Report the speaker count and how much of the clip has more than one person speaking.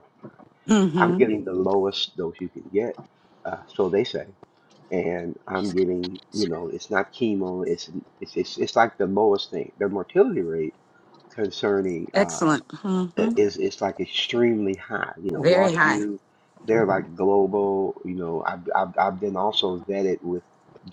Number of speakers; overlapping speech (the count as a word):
two, about 7%